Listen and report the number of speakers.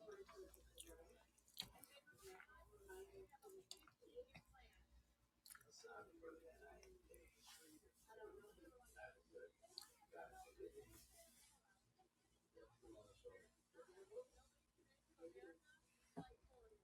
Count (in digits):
0